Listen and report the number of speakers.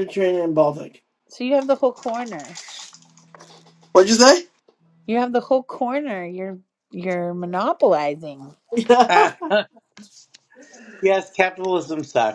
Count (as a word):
three